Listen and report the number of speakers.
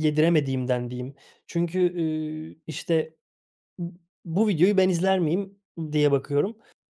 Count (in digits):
1